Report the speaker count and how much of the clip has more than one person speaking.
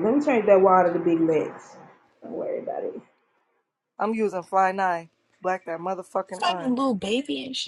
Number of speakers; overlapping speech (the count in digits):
3, about 4%